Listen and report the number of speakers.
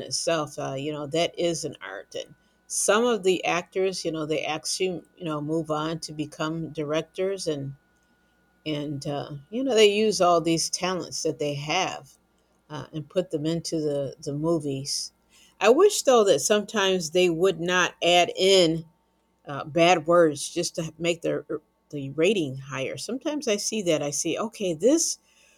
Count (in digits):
1